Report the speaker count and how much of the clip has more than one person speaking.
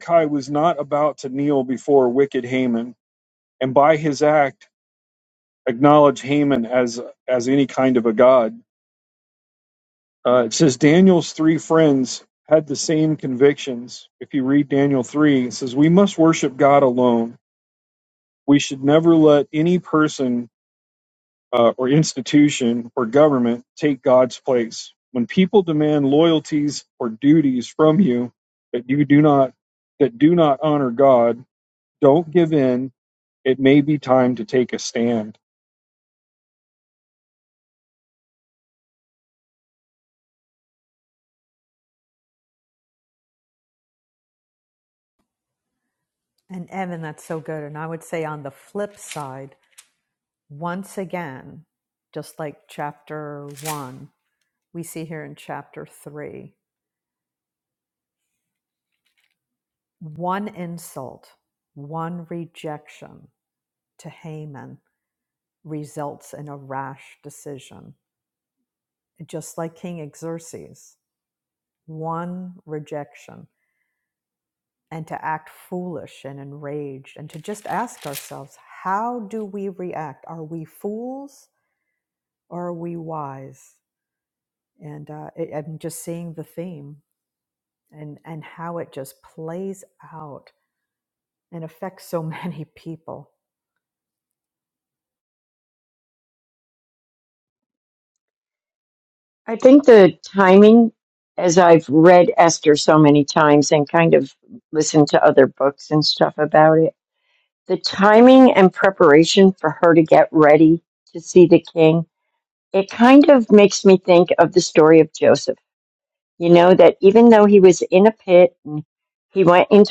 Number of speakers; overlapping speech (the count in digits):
3, no overlap